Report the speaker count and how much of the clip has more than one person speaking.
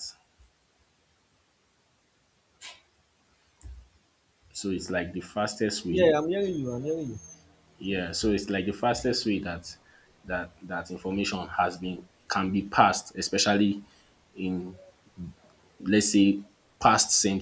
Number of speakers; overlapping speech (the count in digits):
2, about 1%